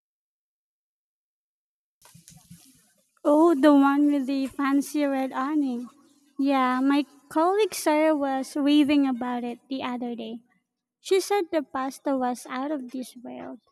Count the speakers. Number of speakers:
1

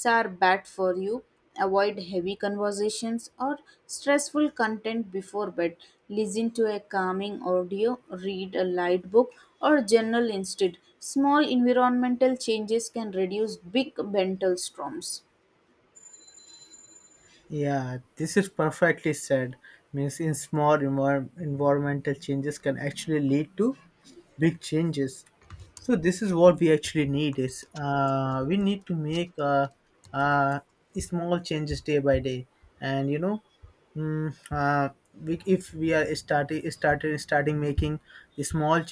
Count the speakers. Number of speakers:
2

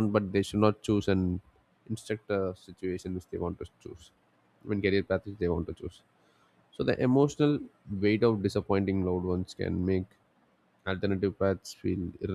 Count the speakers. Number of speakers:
1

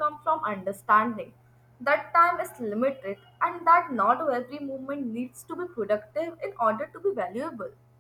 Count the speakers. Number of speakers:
1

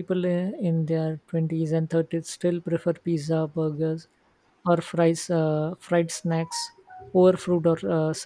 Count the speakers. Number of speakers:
1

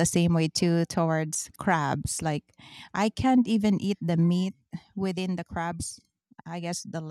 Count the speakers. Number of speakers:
1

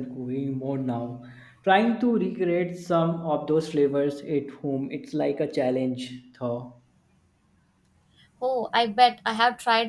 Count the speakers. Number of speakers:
2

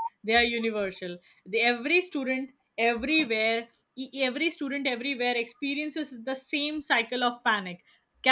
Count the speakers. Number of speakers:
1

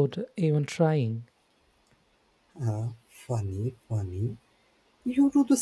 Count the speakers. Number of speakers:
2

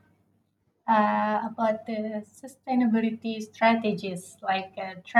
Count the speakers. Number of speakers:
1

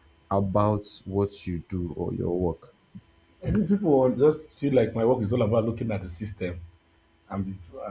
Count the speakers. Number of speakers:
2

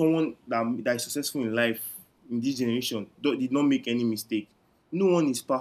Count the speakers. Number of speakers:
1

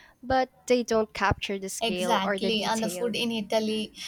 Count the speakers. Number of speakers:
2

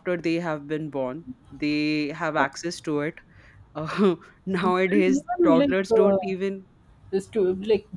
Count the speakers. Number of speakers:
2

